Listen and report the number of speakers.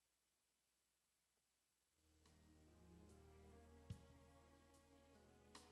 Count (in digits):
0